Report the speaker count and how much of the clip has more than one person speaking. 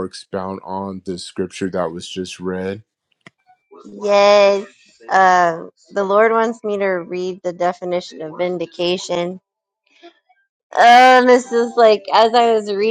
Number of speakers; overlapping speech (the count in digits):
2, no overlap